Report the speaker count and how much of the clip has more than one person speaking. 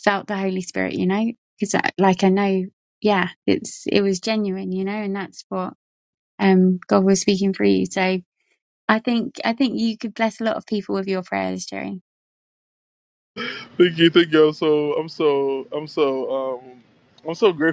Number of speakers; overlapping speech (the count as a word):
two, no overlap